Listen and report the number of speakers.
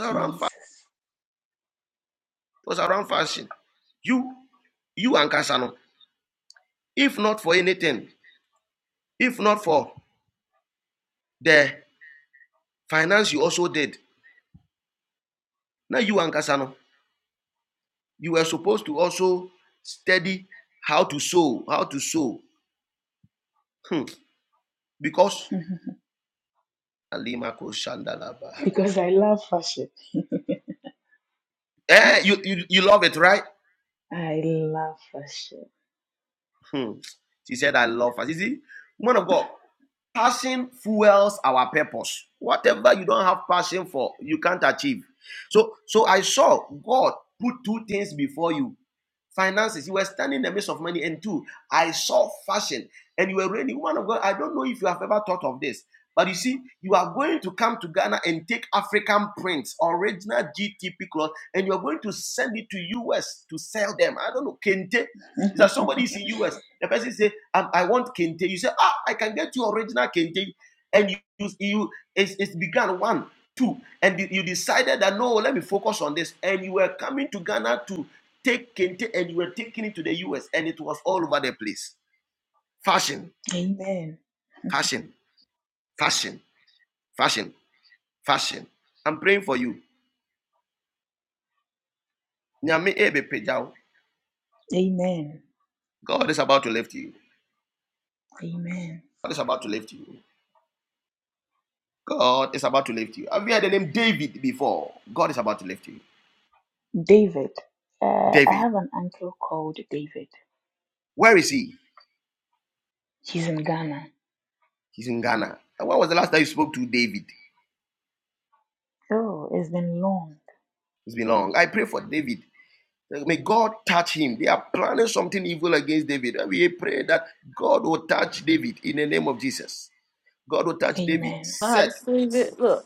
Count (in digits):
3